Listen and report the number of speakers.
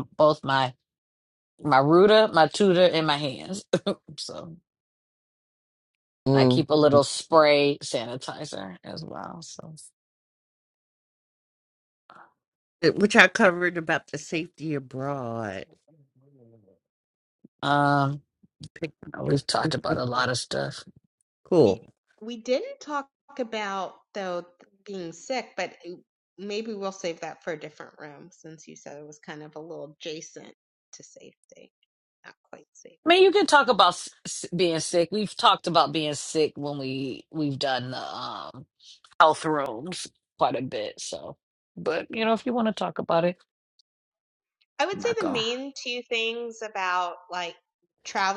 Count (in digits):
3